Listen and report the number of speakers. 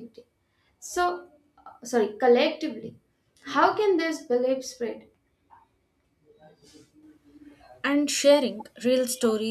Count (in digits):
2